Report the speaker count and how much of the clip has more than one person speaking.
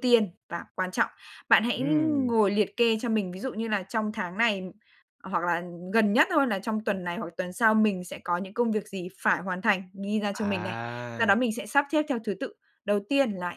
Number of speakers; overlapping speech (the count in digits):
2, about 8%